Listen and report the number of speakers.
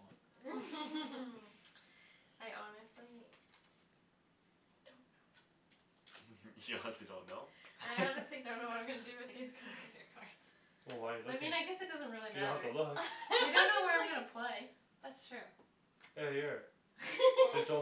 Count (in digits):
4